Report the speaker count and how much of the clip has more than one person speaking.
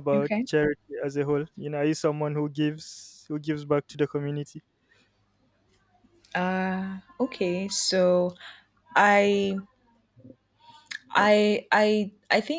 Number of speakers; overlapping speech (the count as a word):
two, about 3%